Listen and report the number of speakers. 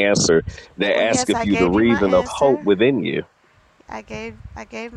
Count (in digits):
2